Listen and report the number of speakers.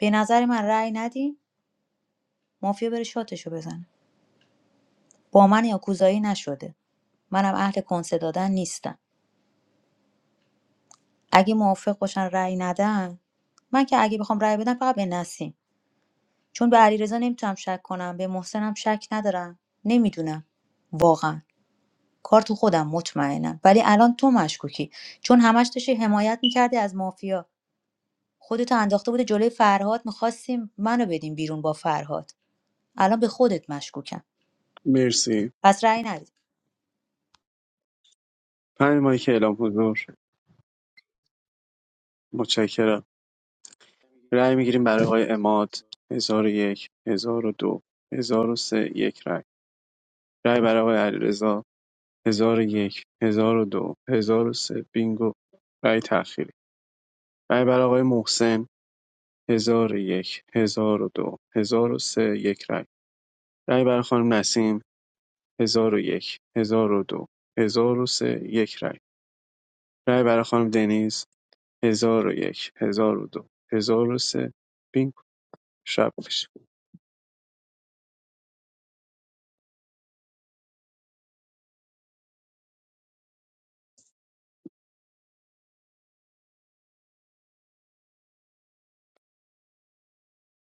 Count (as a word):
two